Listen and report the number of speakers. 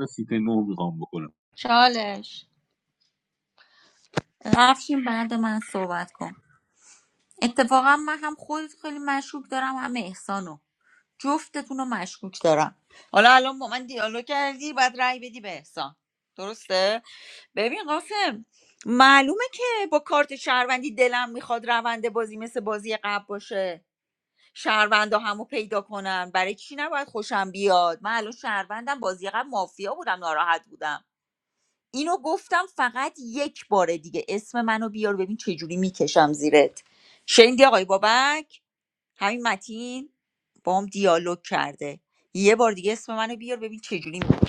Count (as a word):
two